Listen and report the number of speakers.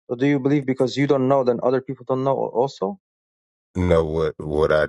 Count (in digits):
2